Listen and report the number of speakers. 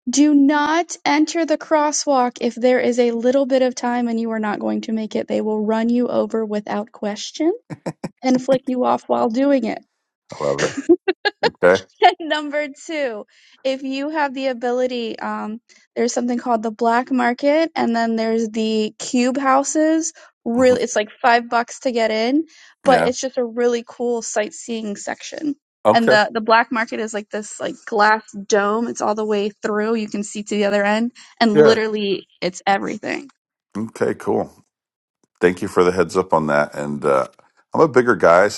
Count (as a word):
two